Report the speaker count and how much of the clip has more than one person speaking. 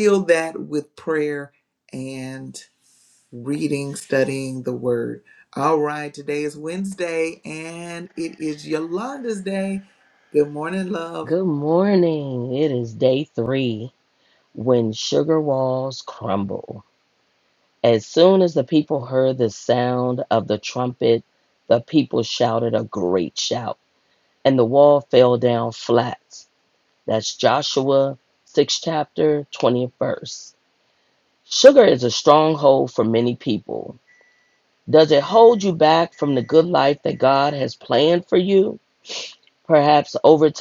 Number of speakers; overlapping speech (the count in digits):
2, under 1%